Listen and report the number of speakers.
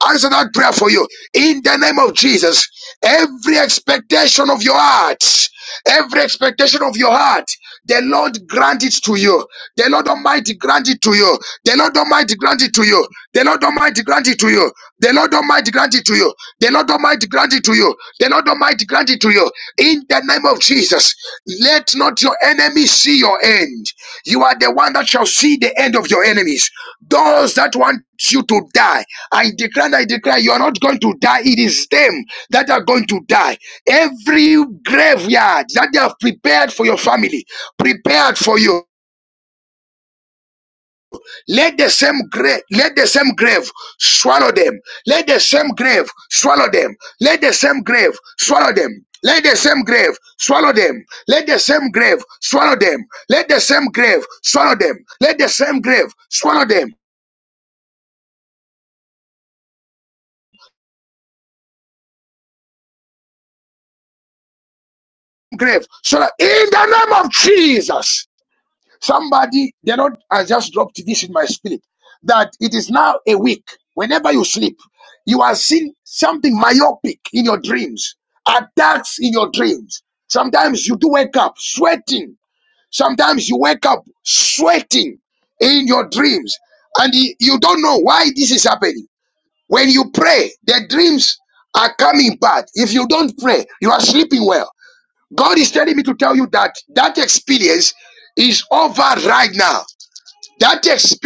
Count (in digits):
1